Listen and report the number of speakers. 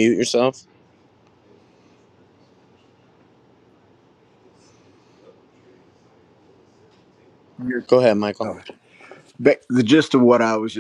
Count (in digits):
2